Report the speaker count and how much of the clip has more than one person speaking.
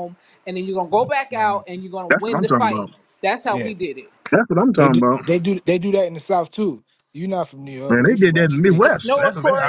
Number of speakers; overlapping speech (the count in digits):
3, about 34%